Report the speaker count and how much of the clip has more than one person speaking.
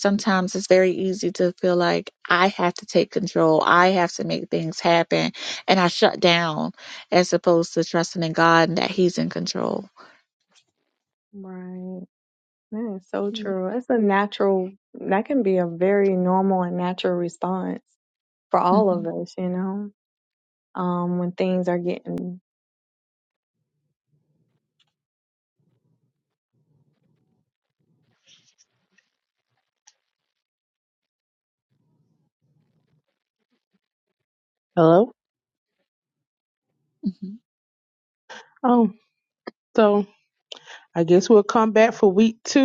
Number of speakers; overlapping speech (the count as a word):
three, under 1%